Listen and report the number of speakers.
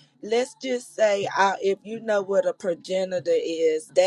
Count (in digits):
1